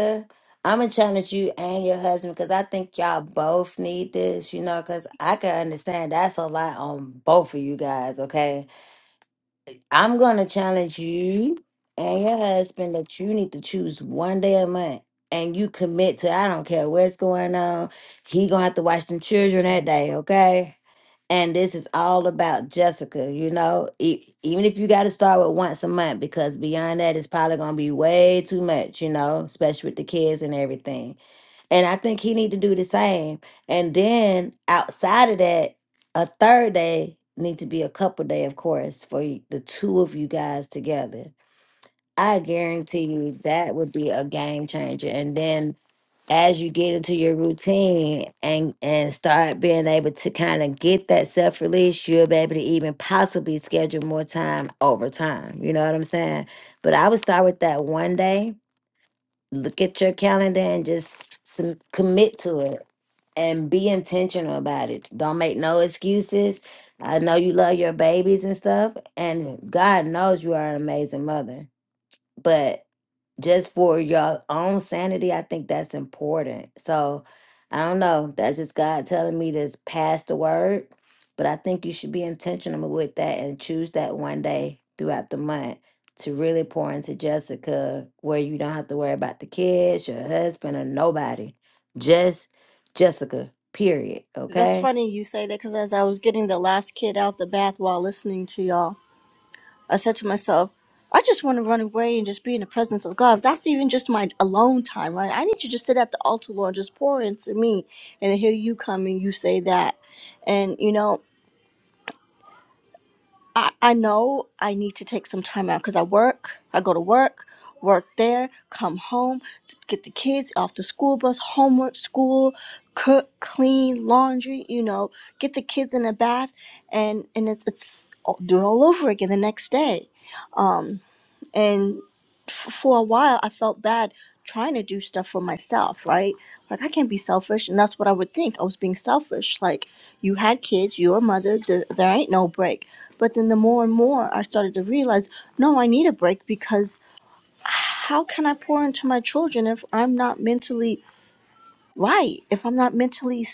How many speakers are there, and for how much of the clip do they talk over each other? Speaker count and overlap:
2, under 1%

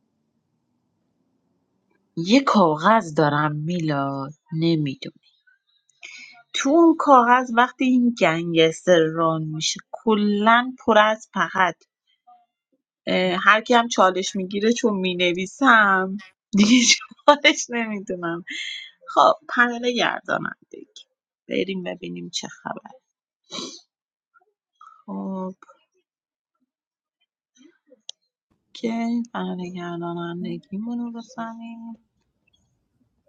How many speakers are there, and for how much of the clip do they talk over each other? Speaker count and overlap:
1, no overlap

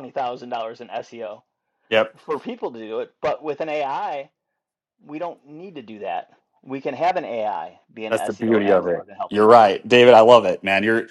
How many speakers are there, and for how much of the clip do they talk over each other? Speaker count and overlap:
2, about 12%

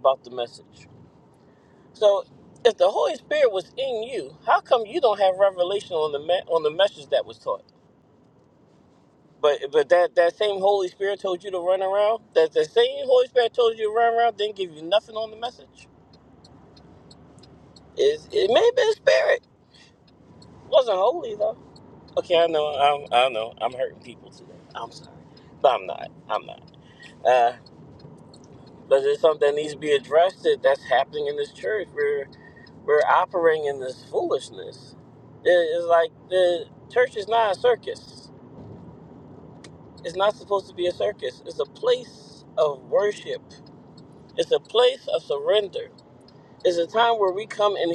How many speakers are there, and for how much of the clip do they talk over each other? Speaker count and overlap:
1, no overlap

